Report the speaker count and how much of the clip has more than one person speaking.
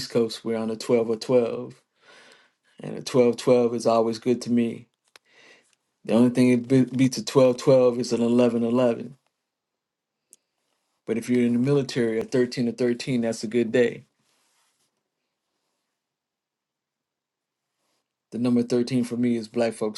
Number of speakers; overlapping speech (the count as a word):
one, no overlap